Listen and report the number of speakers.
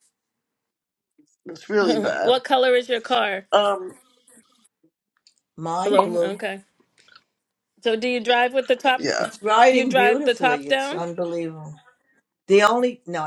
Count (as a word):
three